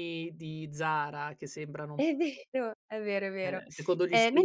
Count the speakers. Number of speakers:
two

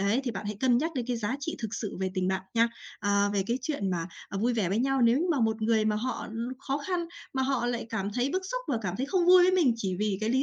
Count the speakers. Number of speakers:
one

